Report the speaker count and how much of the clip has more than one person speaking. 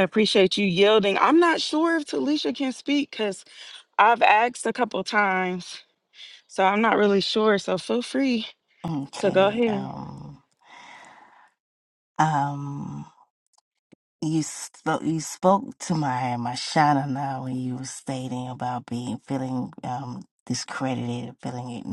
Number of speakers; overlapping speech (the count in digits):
2, about 3%